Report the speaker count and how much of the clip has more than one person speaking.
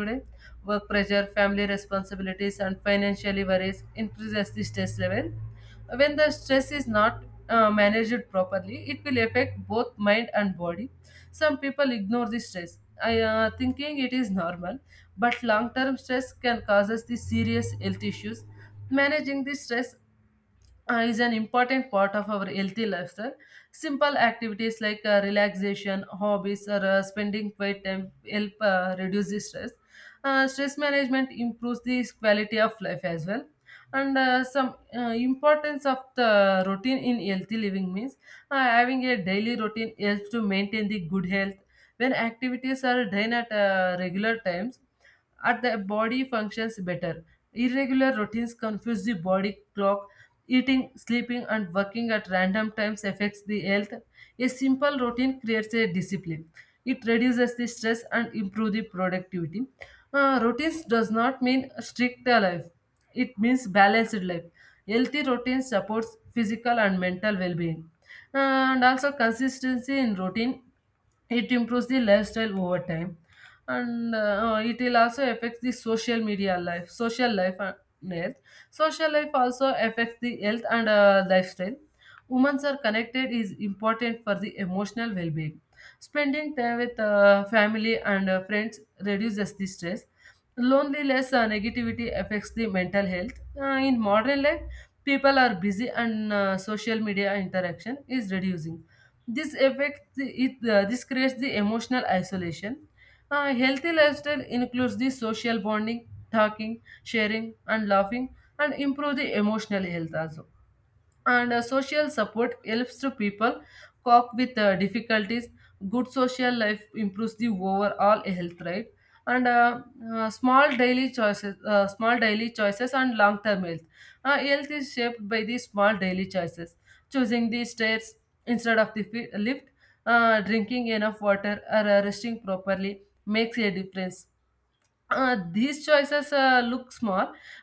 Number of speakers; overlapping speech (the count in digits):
1, no overlap